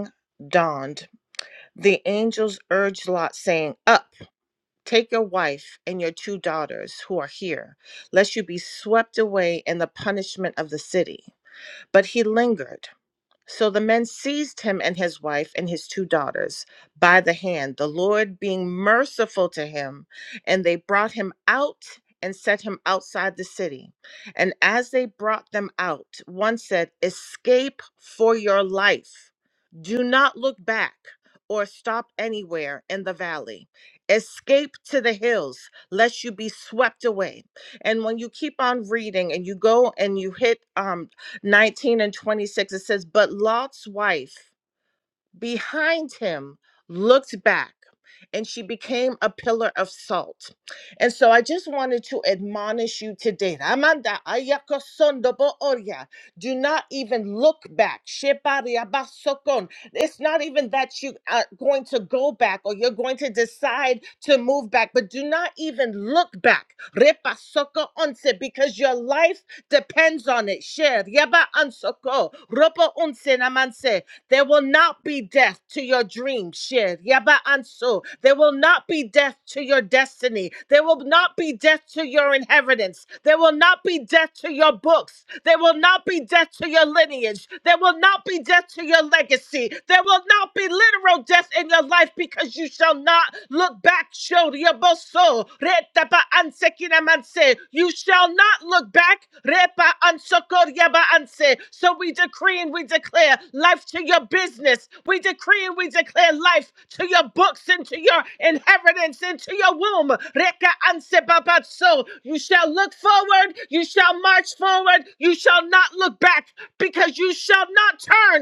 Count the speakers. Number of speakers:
1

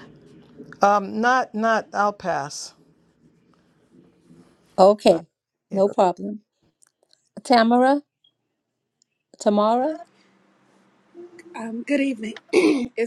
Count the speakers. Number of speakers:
3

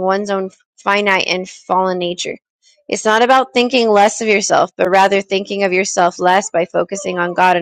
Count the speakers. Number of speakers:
1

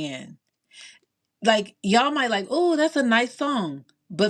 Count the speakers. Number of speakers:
1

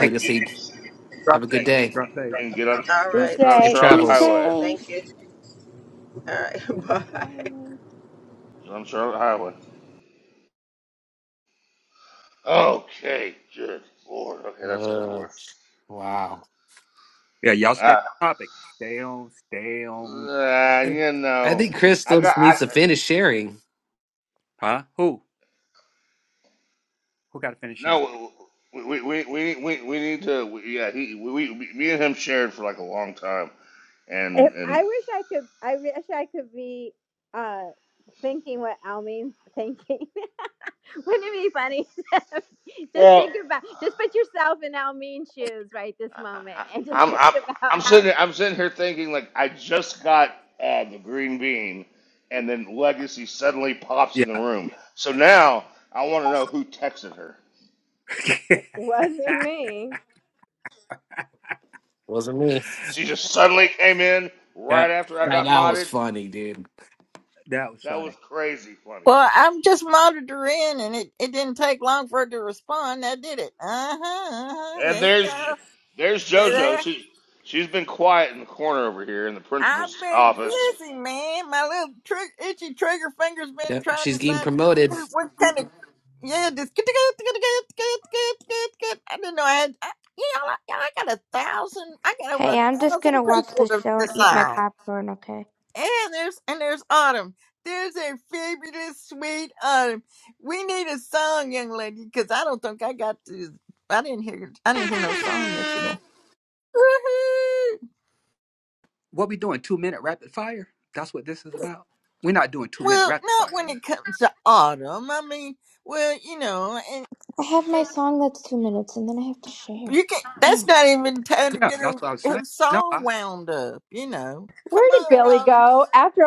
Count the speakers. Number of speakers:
7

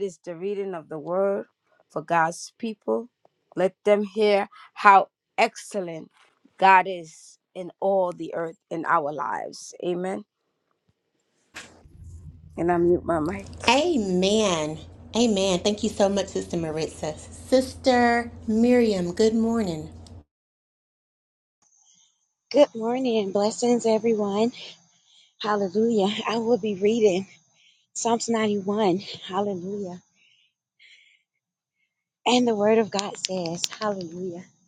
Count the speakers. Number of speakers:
3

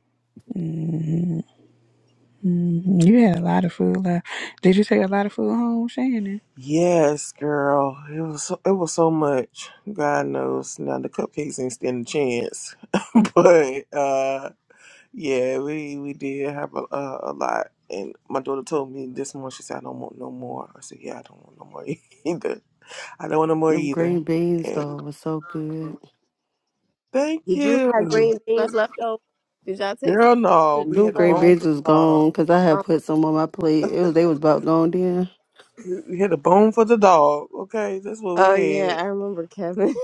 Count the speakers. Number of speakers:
4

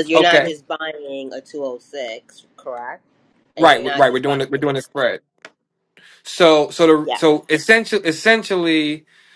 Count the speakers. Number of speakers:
2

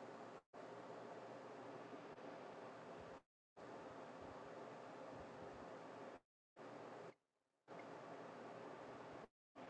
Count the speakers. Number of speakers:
0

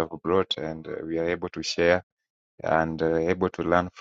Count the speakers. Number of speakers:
1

